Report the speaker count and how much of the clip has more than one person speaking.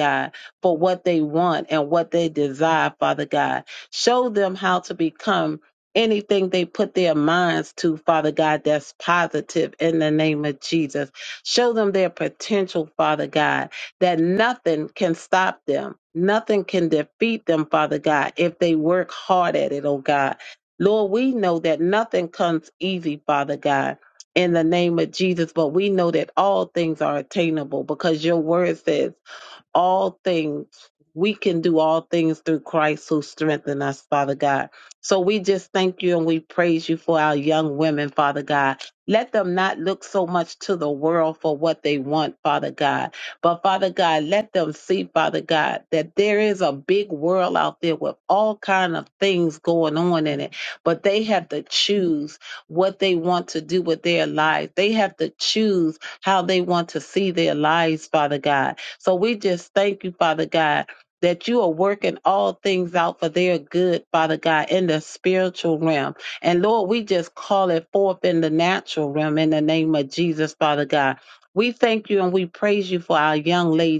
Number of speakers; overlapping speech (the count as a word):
one, no overlap